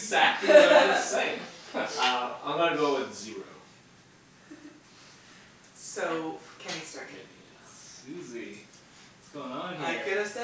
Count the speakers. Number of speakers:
3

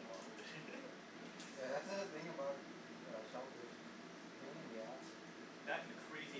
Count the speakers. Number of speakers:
2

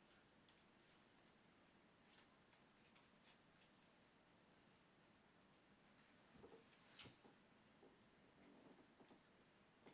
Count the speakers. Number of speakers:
0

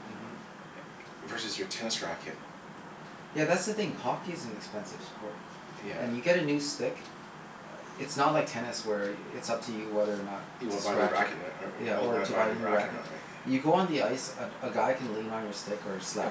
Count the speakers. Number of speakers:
2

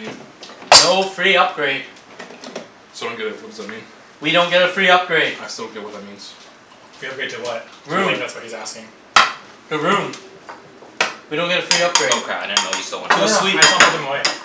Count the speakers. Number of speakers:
4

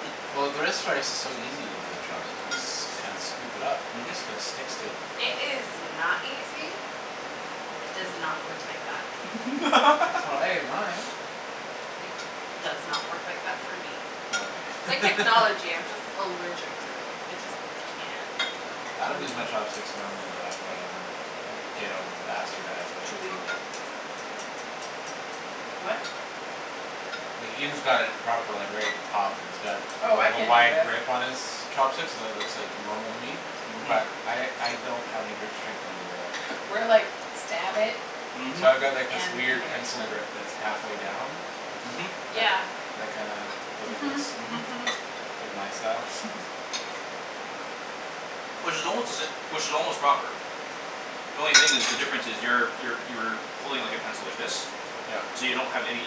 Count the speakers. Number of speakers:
4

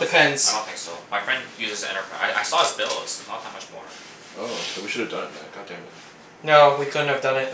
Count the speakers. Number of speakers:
3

